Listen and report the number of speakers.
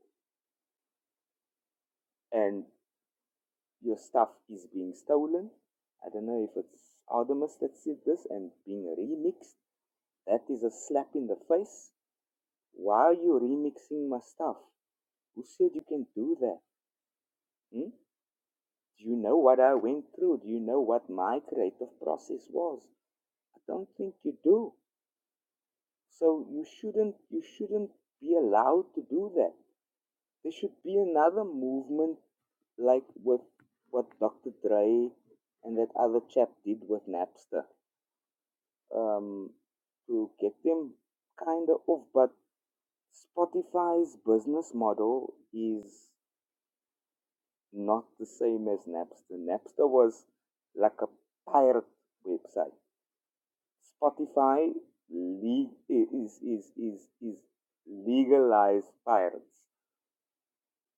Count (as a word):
one